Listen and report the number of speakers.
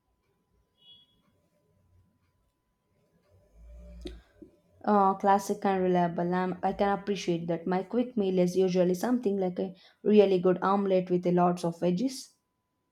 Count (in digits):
1